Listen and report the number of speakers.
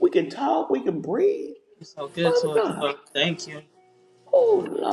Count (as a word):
two